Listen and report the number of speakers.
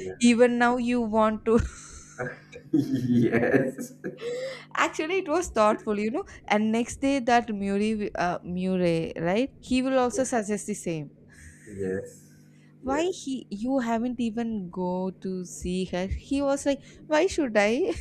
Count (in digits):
2